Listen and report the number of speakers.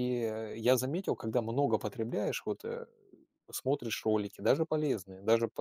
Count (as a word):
one